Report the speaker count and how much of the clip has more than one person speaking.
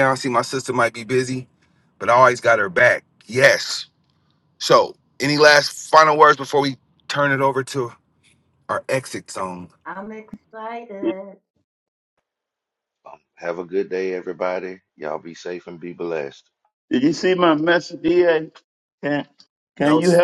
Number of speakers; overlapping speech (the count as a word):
four, about 1%